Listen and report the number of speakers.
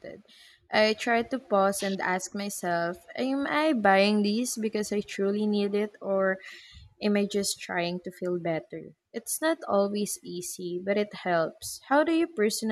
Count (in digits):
1